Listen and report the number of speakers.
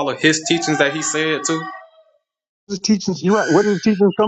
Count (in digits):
2